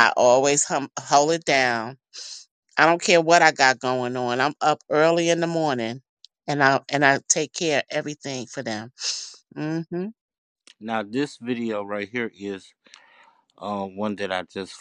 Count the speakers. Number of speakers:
2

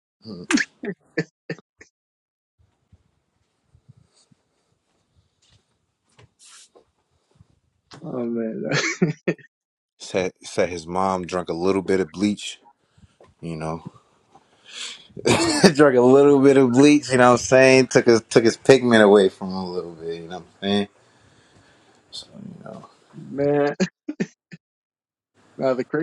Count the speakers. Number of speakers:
2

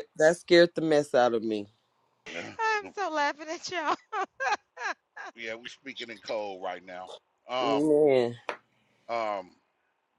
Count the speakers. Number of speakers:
3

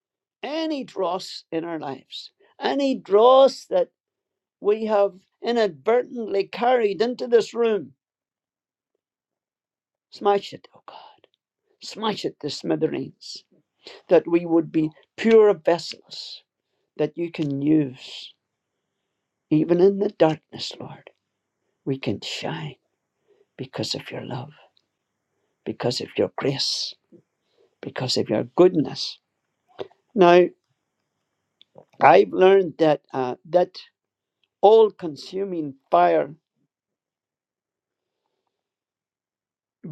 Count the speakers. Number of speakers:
1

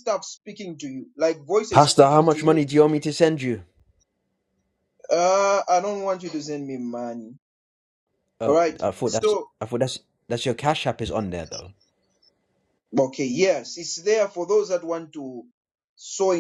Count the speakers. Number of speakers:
2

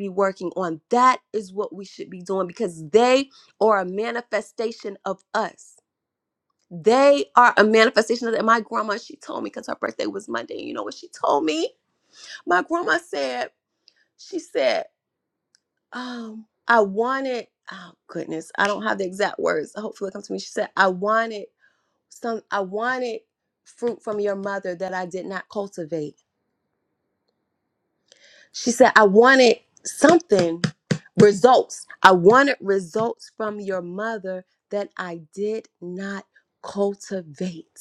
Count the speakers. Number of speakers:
1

